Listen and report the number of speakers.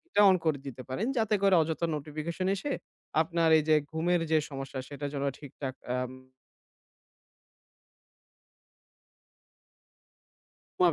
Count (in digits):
1